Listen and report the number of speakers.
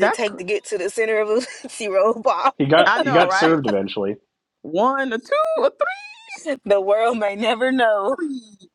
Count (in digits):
3